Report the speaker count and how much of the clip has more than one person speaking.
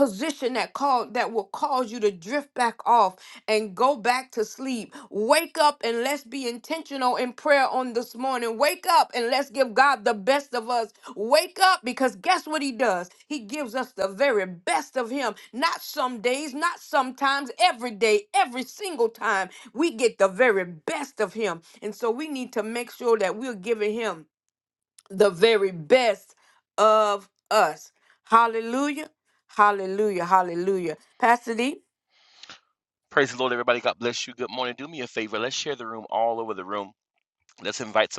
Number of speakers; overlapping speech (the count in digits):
2, no overlap